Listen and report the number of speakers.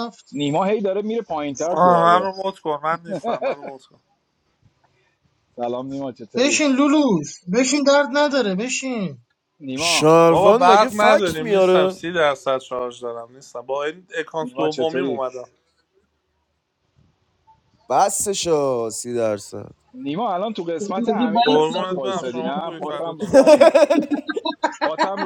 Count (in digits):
4